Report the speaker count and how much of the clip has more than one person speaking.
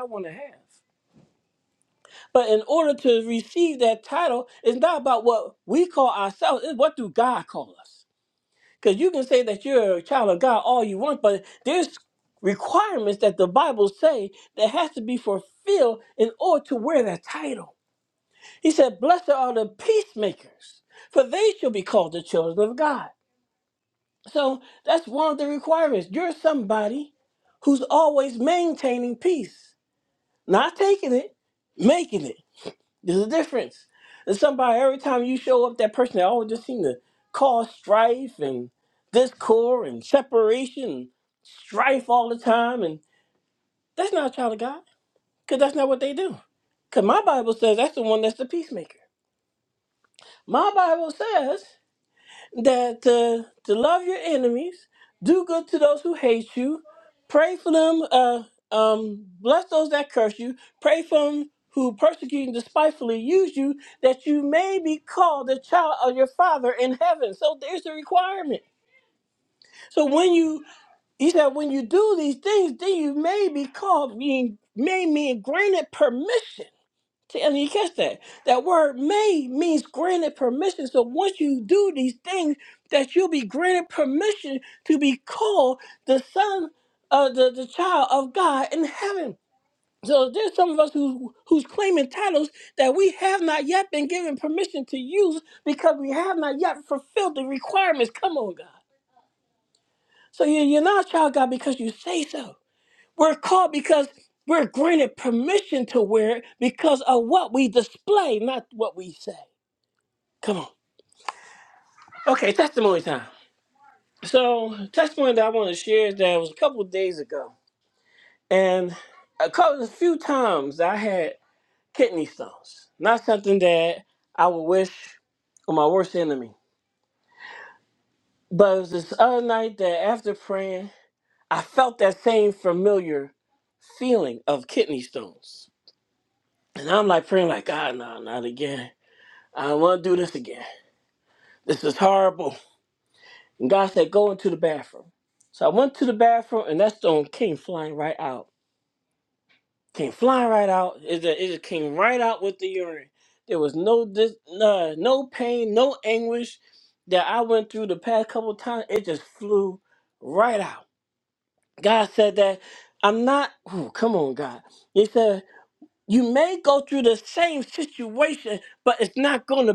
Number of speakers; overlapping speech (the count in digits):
1, no overlap